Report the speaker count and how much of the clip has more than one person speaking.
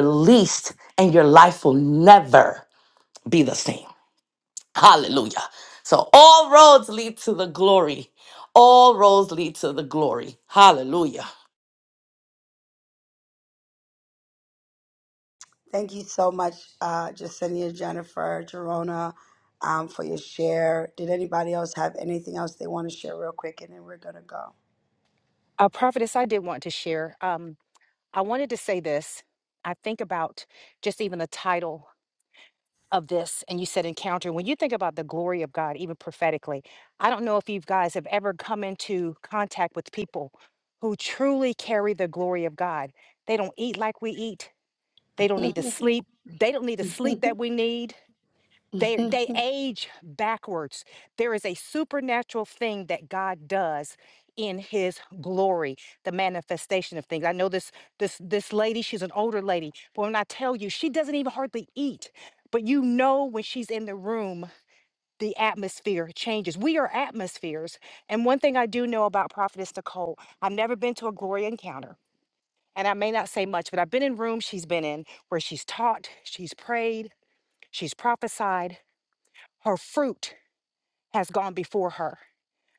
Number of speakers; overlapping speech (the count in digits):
3, no overlap